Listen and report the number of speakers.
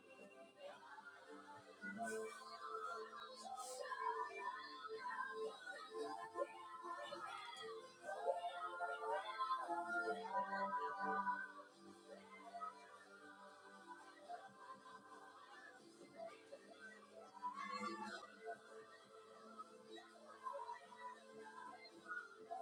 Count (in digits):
0